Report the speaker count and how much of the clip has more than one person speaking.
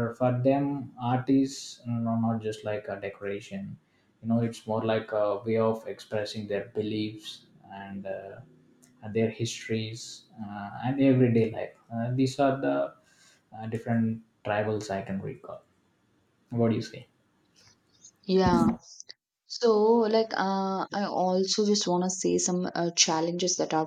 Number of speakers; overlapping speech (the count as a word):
two, no overlap